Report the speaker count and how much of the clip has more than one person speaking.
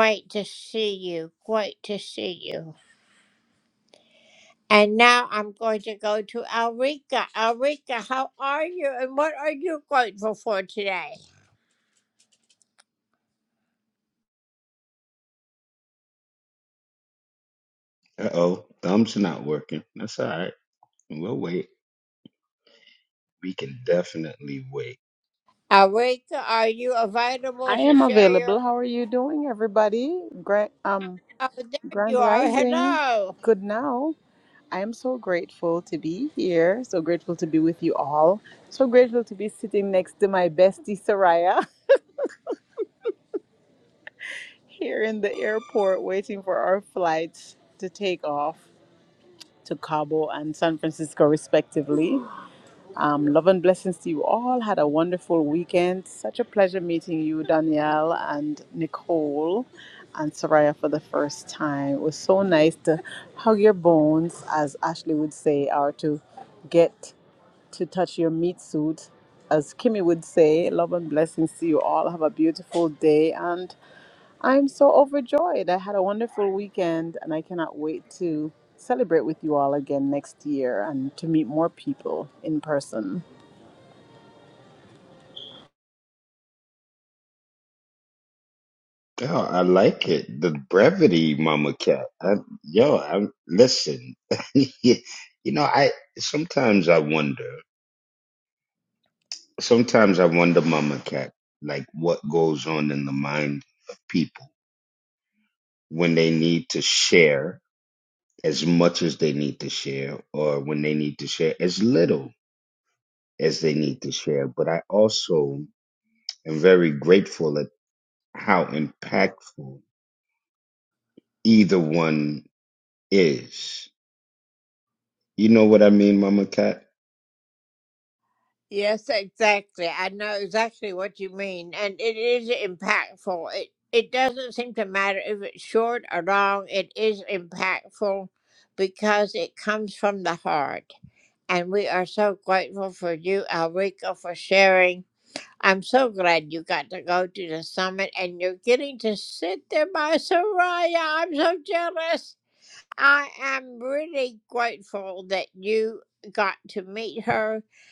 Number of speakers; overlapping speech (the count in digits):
3, about 1%